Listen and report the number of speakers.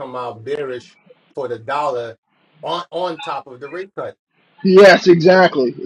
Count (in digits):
2